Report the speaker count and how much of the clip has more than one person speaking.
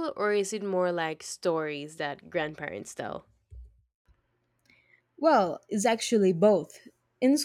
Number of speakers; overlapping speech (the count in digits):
2, no overlap